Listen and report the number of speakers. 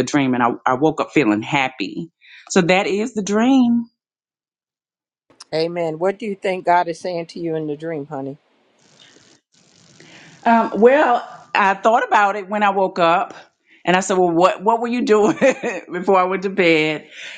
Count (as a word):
two